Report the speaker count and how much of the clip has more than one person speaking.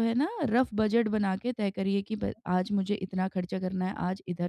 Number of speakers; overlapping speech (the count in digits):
1, no overlap